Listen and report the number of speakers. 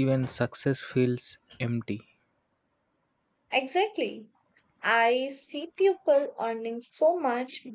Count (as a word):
two